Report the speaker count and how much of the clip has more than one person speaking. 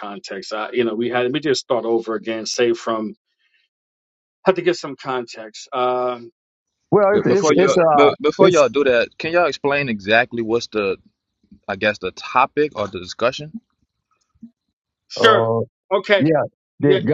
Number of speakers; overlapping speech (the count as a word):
three, about 9%